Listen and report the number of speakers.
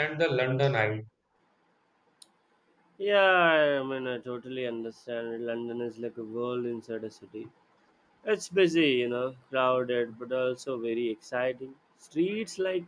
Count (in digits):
2